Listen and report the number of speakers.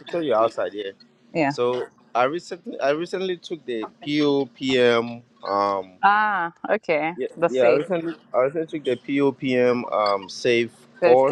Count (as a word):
two